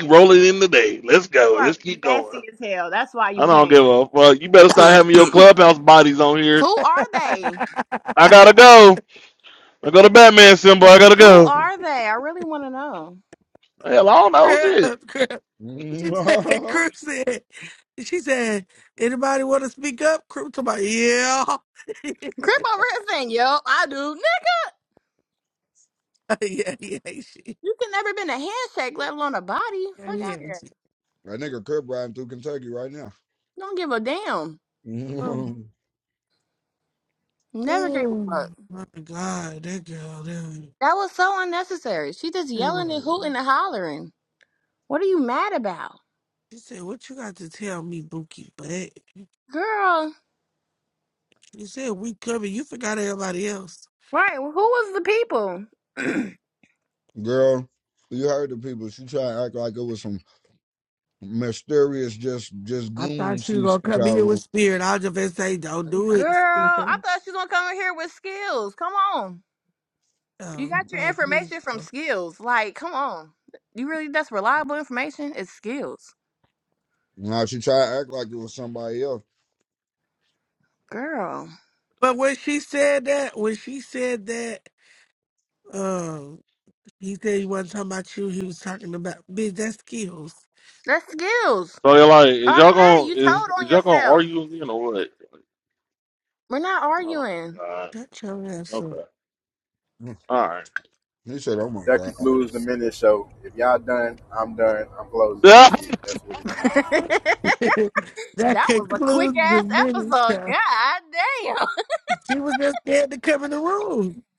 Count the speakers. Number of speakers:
5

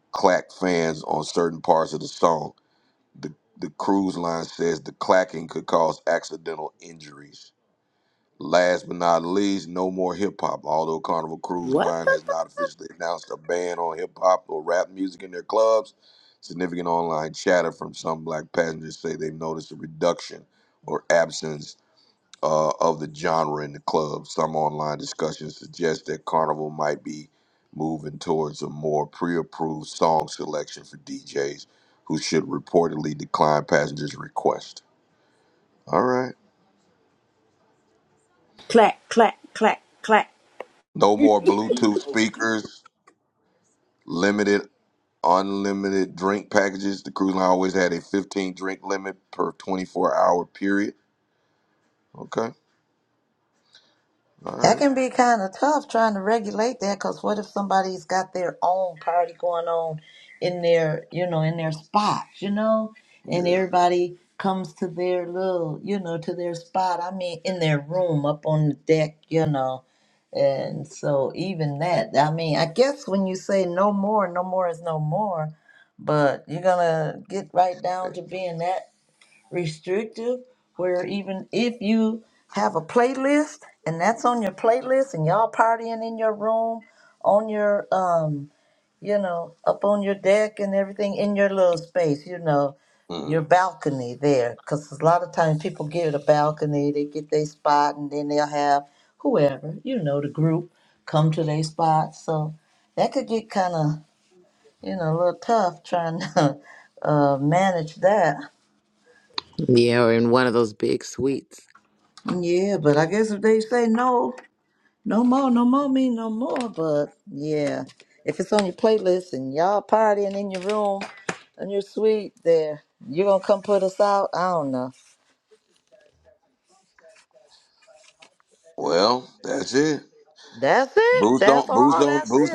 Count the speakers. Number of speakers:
4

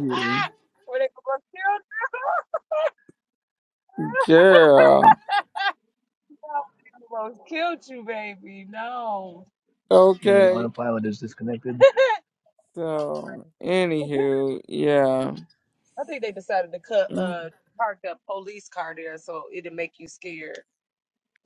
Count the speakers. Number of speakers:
3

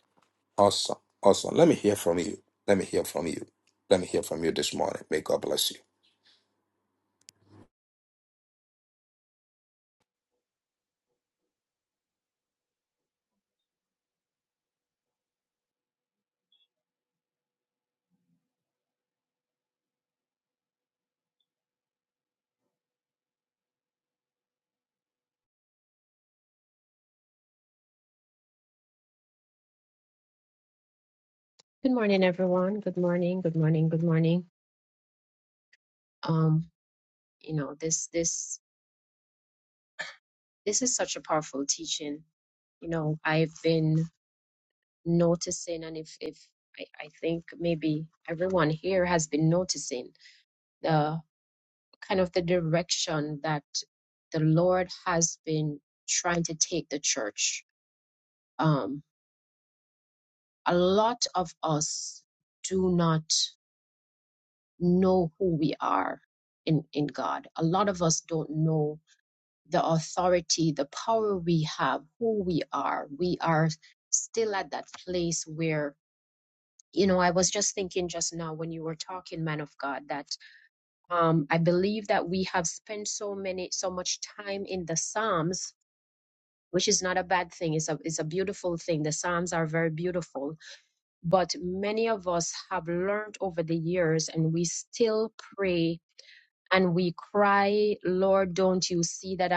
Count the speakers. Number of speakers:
2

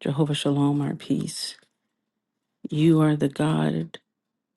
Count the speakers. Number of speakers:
1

